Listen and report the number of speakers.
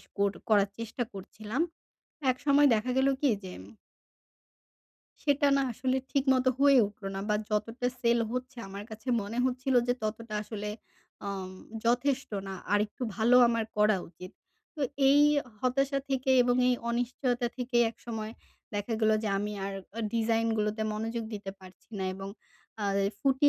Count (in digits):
1